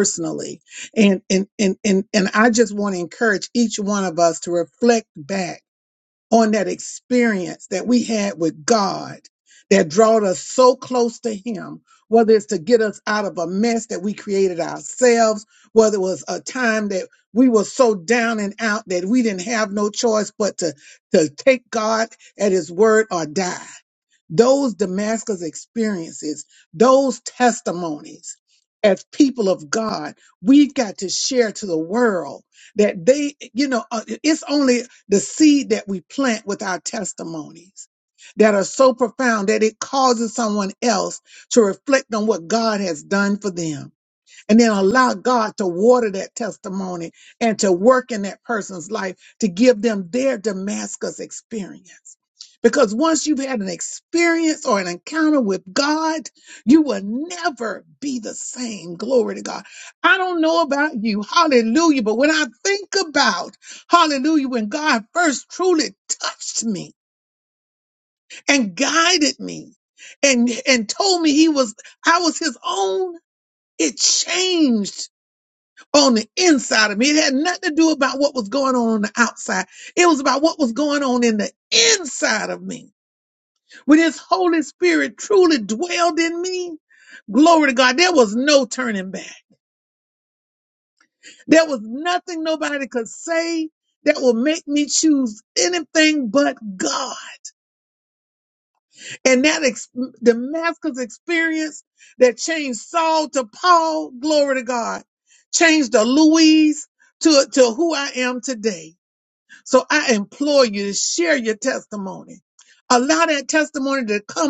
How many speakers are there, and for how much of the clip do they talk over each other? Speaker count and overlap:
one, no overlap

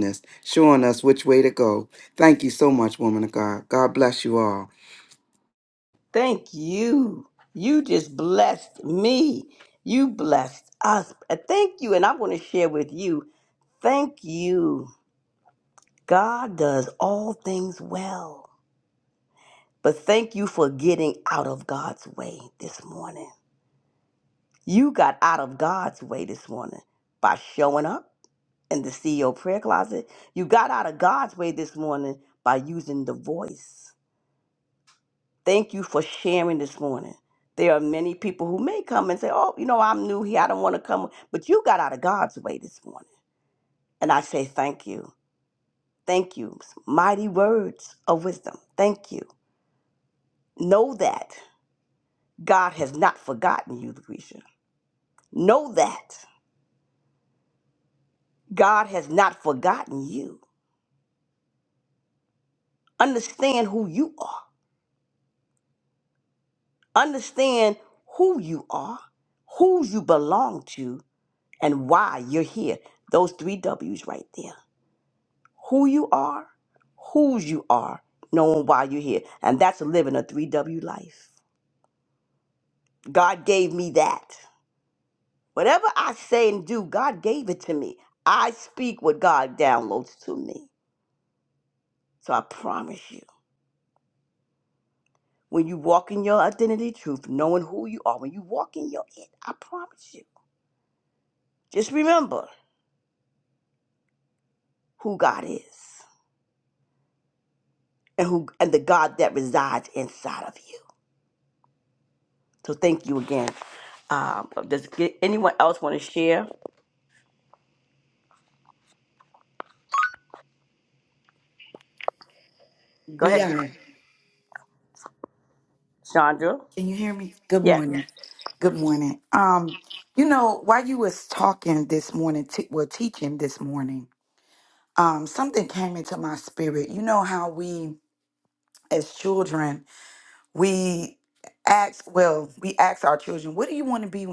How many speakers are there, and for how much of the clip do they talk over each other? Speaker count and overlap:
three, under 1%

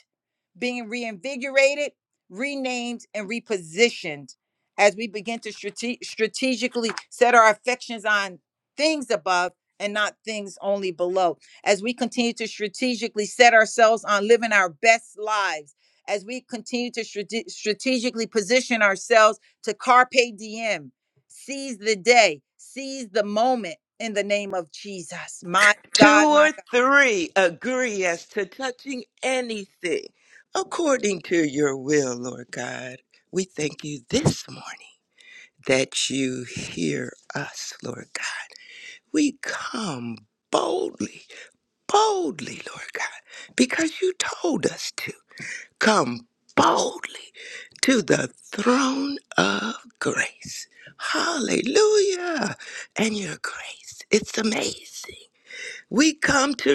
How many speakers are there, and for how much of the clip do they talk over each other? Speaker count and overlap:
two, about 1%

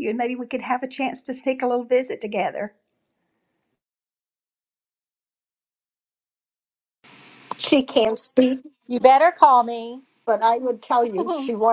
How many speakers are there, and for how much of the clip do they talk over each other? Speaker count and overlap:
three, no overlap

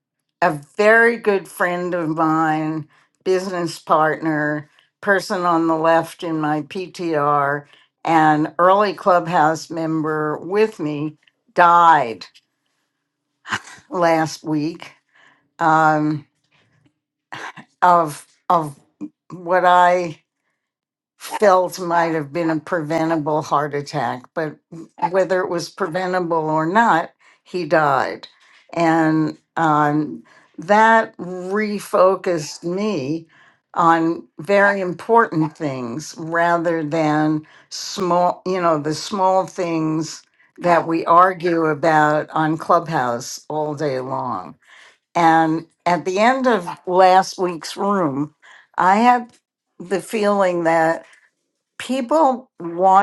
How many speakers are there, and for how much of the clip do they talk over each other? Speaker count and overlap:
one, no overlap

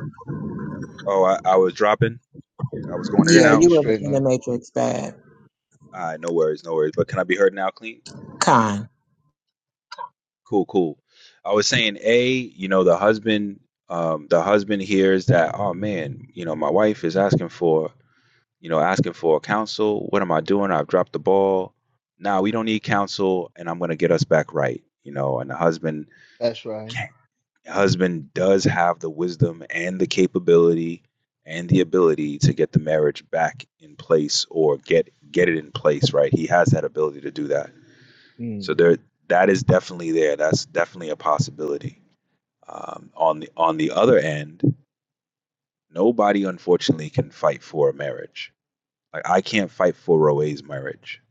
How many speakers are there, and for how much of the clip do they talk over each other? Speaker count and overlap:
three, about 2%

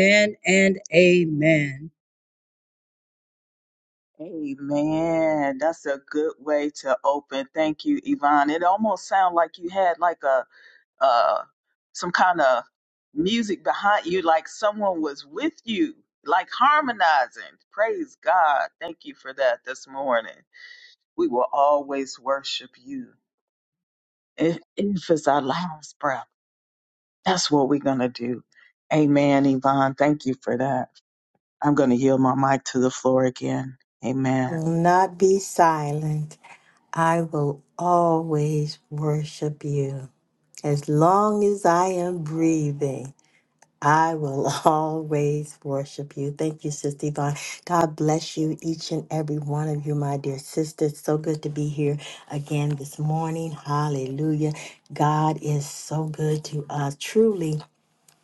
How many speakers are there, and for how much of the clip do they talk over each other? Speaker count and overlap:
three, under 1%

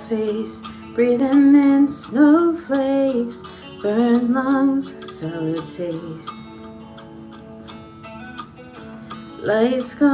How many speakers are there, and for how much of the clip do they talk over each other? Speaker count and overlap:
one, no overlap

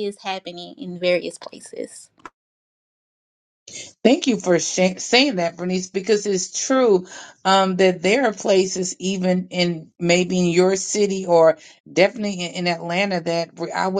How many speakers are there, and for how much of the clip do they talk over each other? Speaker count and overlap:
two, no overlap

